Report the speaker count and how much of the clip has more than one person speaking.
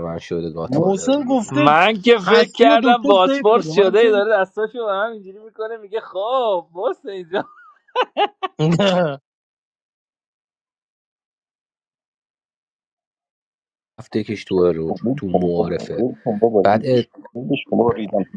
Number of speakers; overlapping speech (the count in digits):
4, about 23%